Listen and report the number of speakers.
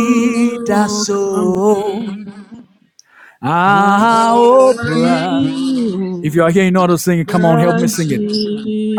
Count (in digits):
2